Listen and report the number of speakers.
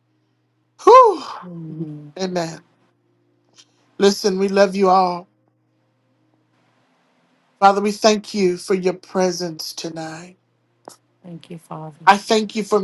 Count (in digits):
2